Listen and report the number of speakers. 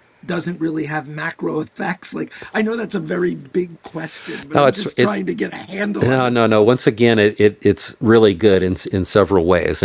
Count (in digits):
2